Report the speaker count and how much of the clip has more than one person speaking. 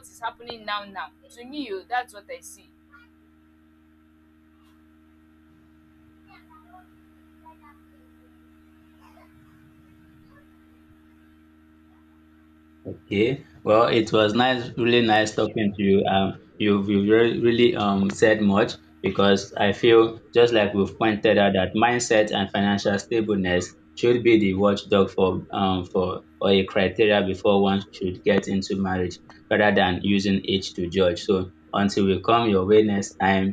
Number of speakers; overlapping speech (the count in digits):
2, no overlap